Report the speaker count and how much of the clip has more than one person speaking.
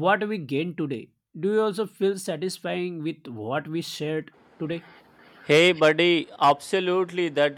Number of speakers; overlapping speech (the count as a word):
two, no overlap